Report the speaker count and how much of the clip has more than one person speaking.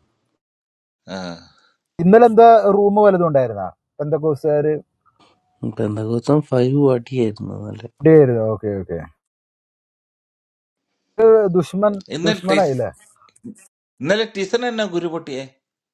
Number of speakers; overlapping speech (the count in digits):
3, about 4%